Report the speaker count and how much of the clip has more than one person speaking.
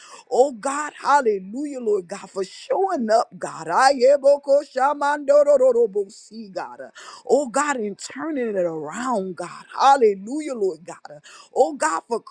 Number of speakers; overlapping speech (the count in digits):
1, no overlap